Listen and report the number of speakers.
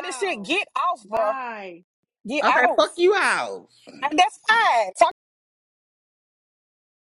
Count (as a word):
three